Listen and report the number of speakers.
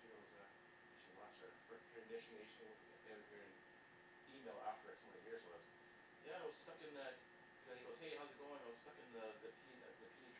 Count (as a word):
one